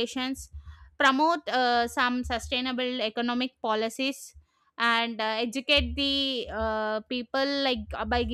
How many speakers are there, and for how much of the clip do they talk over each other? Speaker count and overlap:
one, no overlap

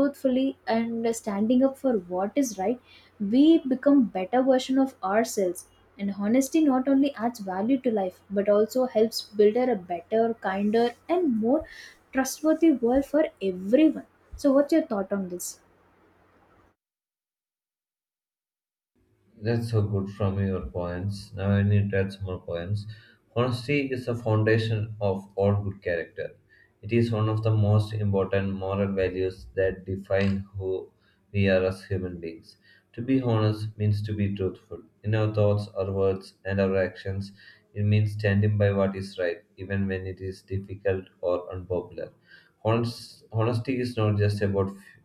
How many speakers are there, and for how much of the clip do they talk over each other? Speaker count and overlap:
two, no overlap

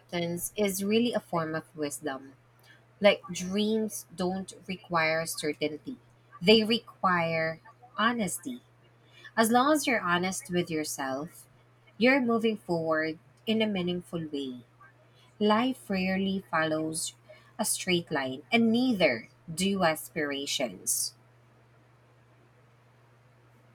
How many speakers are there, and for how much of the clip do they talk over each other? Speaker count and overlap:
one, no overlap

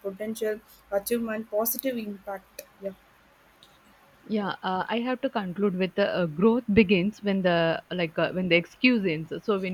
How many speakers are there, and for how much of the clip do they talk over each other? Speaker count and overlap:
two, no overlap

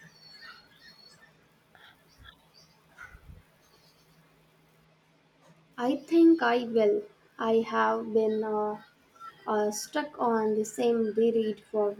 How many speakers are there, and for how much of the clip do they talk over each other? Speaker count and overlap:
one, no overlap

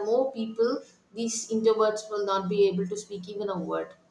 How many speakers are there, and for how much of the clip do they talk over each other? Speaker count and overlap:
one, no overlap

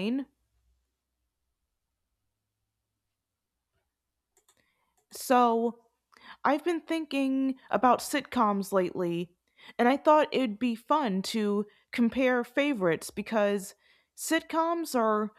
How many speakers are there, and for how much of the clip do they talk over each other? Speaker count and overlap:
one, no overlap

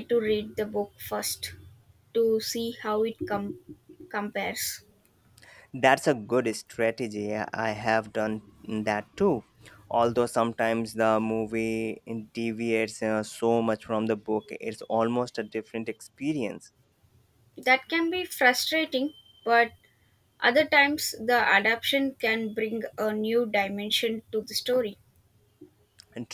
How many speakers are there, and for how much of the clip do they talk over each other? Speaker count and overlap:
two, no overlap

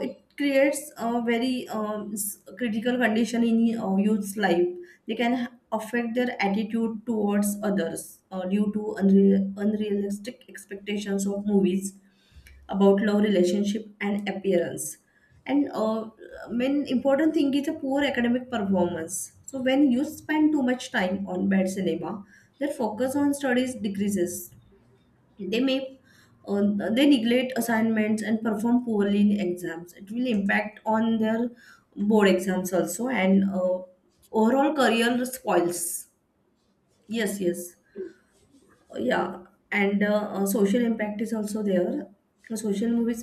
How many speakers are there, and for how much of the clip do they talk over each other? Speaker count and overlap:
one, no overlap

